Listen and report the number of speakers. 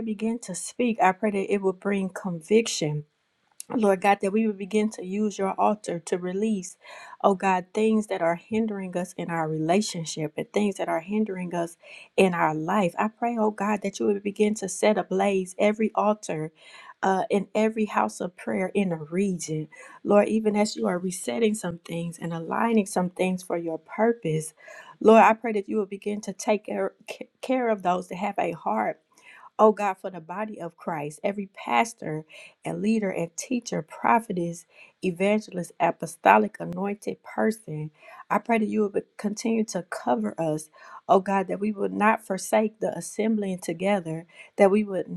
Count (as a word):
one